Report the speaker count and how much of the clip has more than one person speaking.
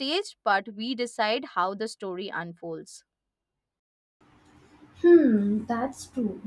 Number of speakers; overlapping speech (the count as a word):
two, no overlap